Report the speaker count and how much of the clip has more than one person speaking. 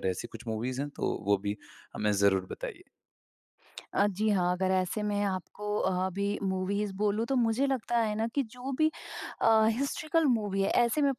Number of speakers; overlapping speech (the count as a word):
two, no overlap